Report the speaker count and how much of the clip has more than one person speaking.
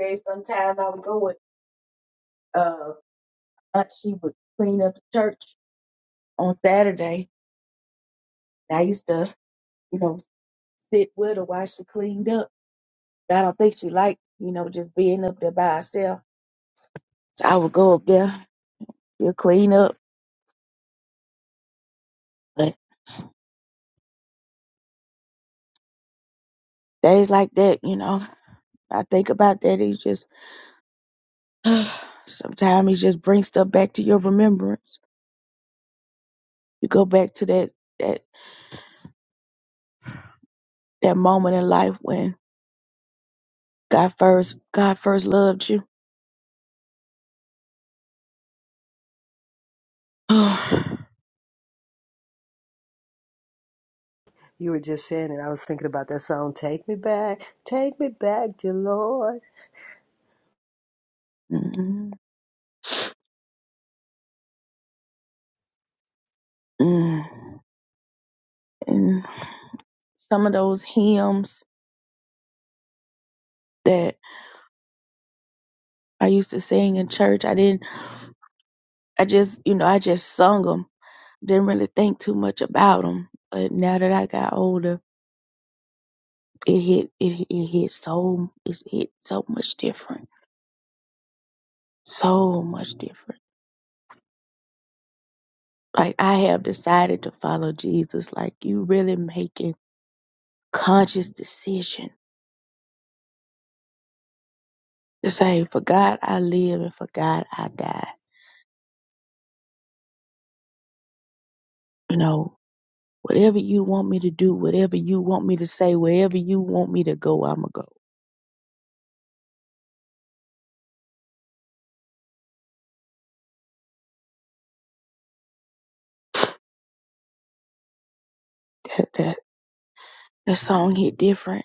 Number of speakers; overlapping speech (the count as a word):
two, no overlap